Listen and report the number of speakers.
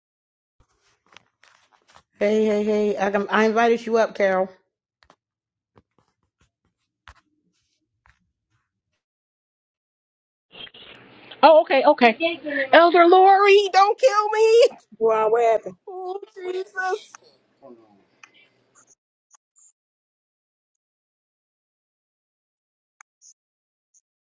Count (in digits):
2